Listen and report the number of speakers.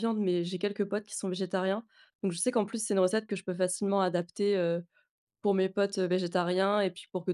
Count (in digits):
1